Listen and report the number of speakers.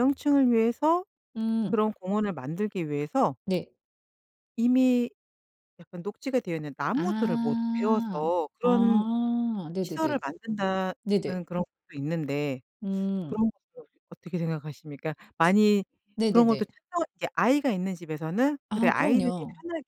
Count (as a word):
two